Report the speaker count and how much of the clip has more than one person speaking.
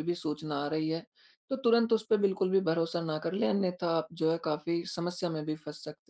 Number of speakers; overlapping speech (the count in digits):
1, no overlap